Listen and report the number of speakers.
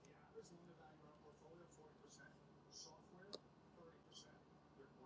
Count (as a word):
zero